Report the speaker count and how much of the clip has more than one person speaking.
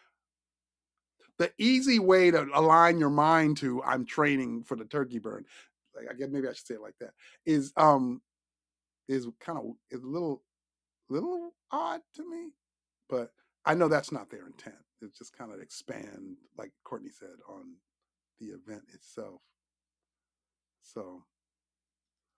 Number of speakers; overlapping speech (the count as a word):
one, no overlap